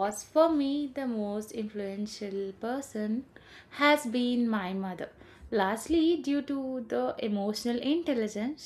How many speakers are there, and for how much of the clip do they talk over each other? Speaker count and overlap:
1, no overlap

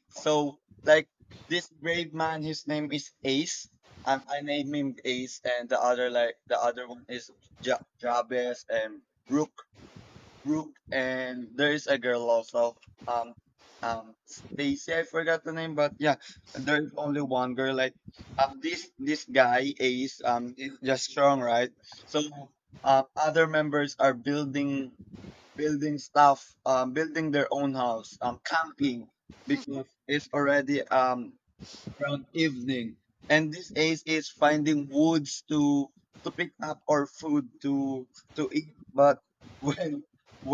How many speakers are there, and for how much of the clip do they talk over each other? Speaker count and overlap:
1, no overlap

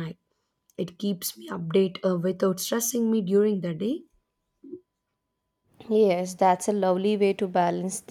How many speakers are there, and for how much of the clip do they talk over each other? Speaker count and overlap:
2, no overlap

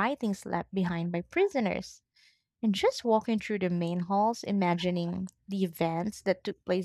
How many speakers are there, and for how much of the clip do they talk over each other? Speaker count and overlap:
1, no overlap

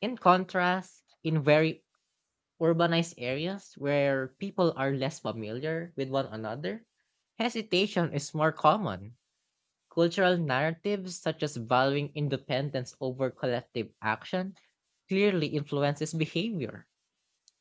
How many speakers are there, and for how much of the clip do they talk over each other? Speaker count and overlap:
1, no overlap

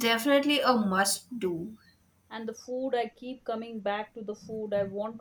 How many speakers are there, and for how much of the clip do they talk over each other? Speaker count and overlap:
2, no overlap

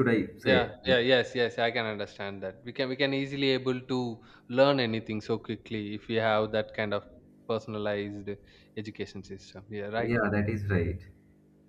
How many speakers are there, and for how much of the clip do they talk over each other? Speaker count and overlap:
2, about 4%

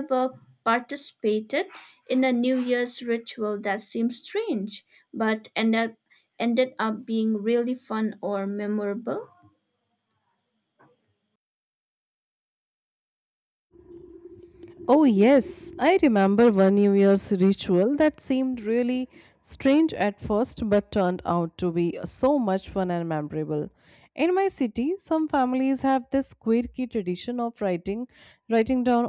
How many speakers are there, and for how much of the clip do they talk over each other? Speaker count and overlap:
2, no overlap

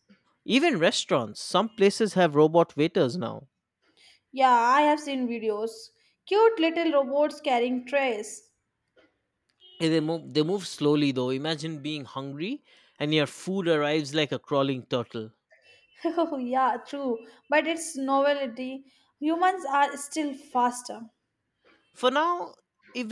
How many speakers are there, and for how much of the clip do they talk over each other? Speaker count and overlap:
2, no overlap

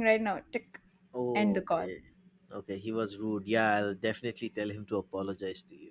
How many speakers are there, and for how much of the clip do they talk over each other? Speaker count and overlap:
2, about 9%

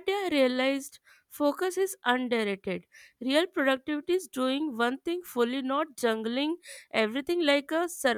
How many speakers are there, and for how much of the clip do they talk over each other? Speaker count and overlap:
1, no overlap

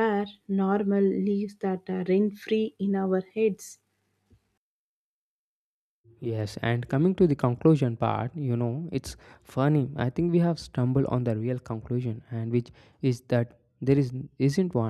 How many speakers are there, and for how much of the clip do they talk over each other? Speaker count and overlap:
2, no overlap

